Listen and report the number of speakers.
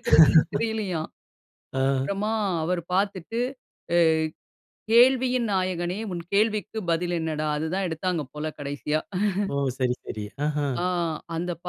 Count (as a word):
two